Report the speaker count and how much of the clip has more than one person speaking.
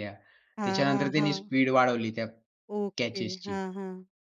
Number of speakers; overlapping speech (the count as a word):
two, about 32%